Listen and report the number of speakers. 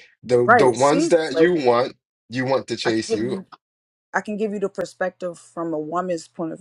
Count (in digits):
2